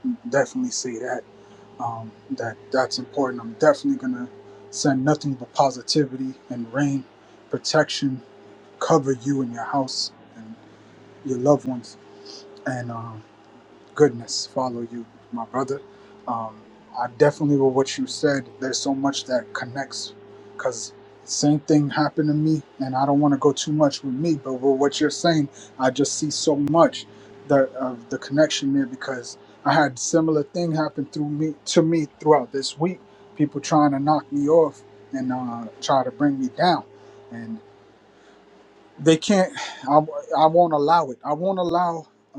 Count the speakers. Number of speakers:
1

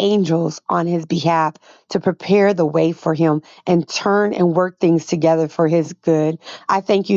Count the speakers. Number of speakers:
1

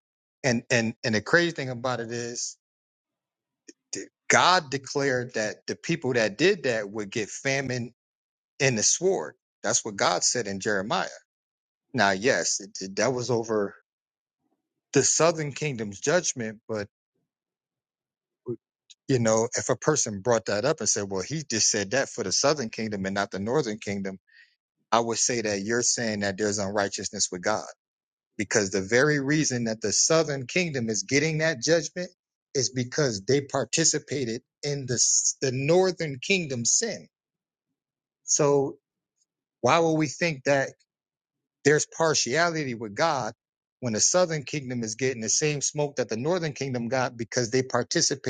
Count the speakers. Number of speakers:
1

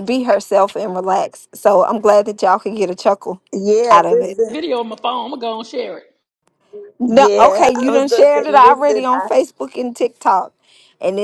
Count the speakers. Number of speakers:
3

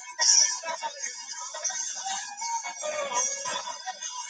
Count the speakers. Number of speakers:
0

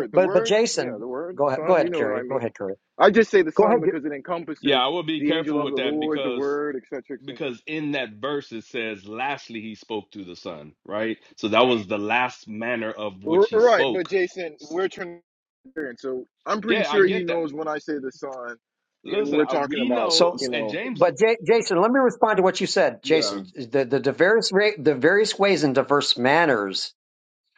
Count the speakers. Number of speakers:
3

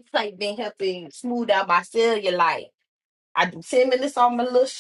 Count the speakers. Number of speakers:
1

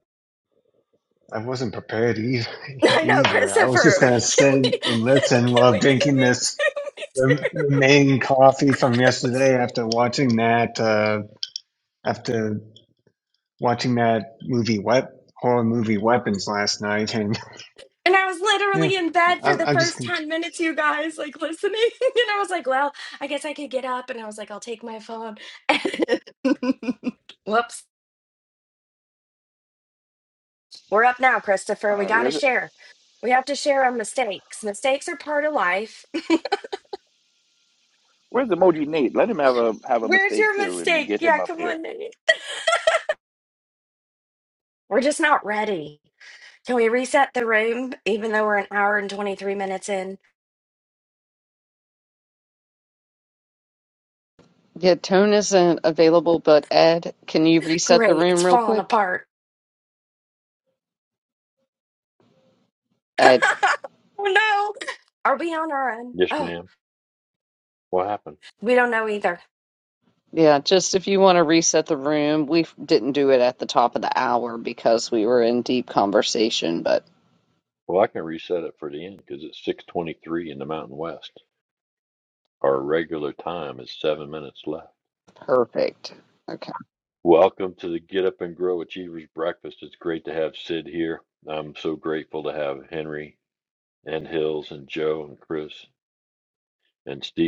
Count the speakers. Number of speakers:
5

